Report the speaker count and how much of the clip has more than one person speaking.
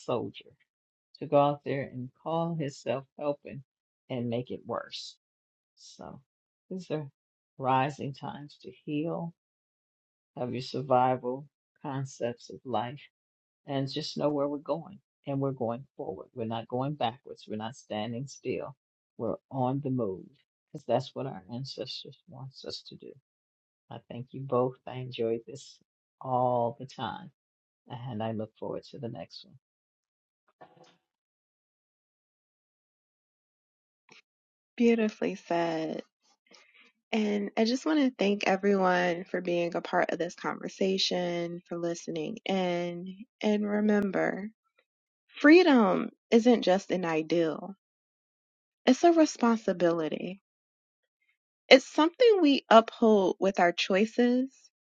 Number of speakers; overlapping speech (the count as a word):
two, no overlap